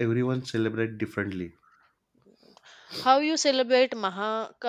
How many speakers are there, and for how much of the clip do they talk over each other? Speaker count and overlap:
two, no overlap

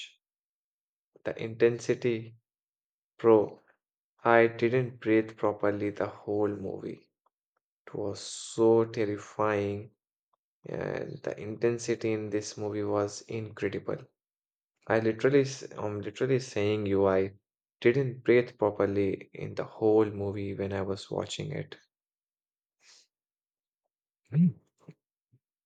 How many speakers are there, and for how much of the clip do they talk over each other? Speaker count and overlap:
one, no overlap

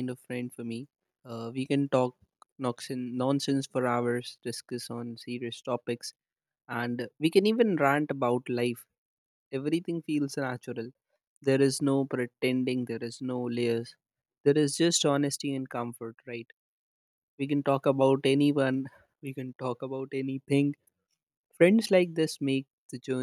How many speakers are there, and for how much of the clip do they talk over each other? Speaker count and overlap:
one, no overlap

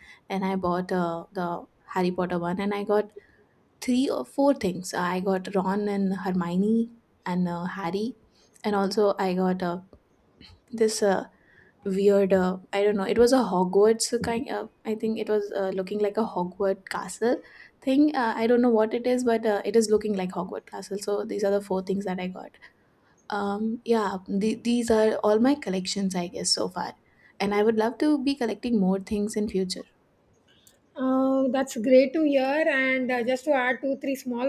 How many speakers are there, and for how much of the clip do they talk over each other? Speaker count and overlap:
two, no overlap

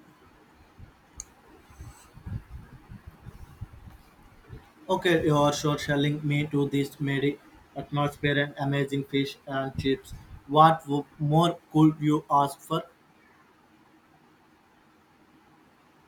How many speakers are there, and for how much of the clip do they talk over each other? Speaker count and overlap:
one, no overlap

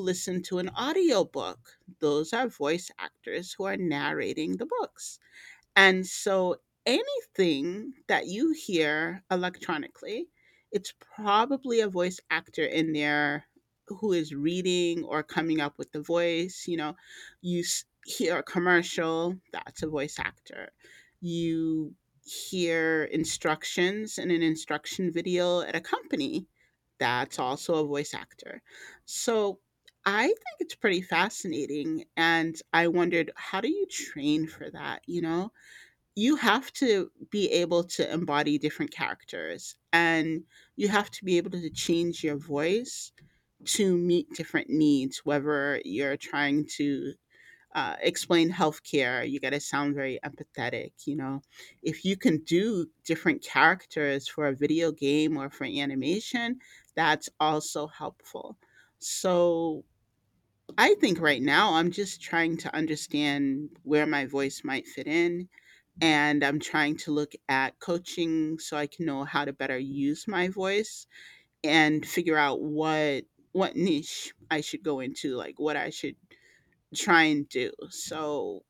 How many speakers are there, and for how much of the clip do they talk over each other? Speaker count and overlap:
one, no overlap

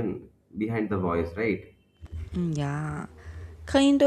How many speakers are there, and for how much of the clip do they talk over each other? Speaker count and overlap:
two, no overlap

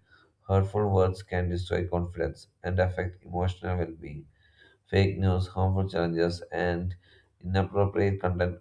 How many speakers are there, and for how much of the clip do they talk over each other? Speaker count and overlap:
one, no overlap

